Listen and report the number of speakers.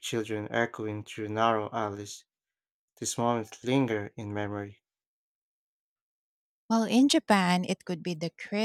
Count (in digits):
2